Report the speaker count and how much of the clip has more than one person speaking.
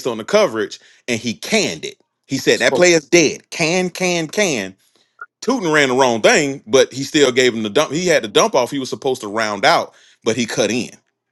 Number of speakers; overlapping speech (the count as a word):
one, no overlap